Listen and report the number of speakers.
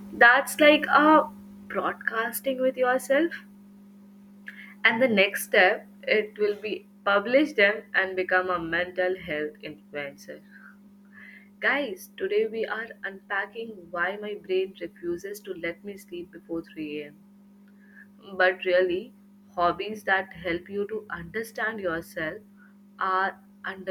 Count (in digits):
1